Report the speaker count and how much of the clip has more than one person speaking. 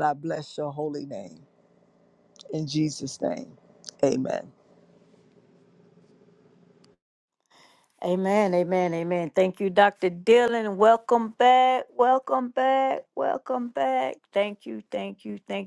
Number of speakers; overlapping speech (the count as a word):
two, no overlap